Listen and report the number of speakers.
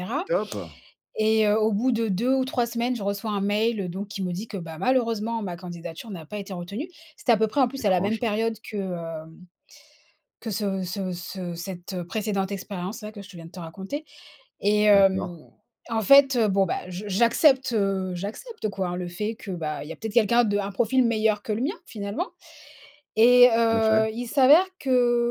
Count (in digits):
2